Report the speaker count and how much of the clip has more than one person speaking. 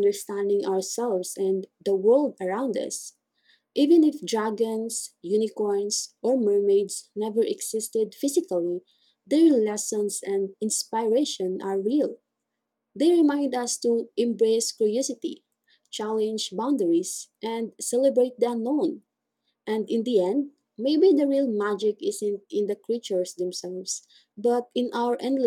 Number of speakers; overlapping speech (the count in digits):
1, no overlap